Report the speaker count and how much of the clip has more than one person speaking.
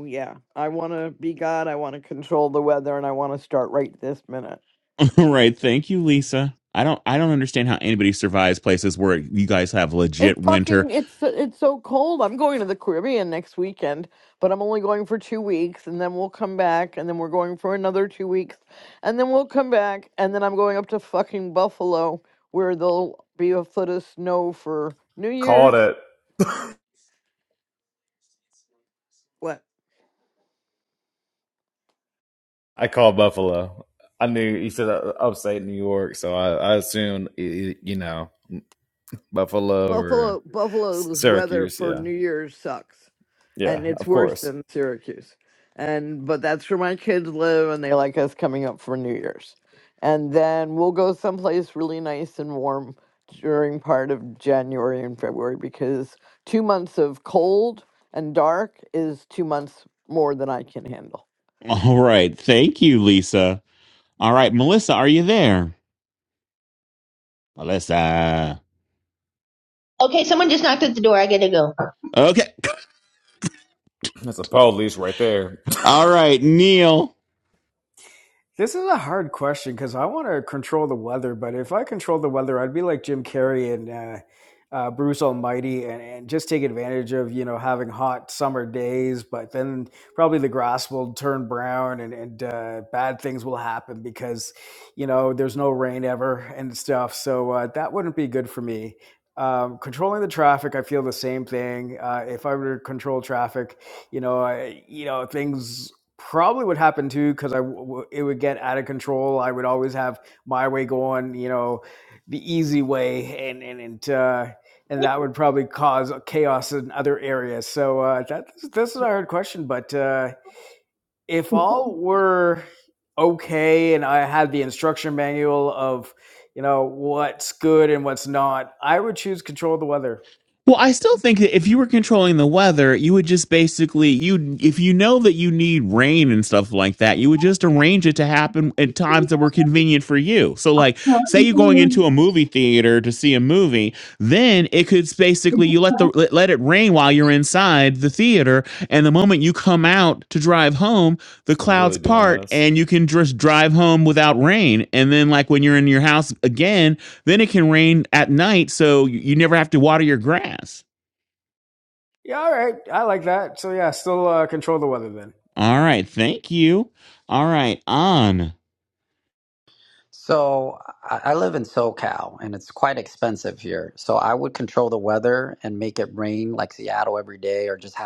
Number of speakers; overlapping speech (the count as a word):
six, about 2%